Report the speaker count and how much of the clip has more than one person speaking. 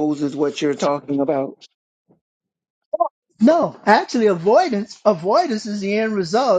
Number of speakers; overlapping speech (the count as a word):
two, no overlap